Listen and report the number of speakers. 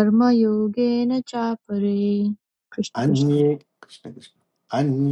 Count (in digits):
2